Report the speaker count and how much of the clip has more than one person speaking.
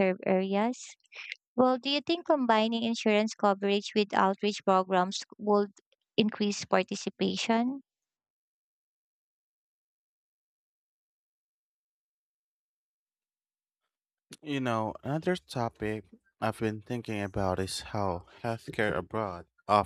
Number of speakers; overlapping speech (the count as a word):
two, no overlap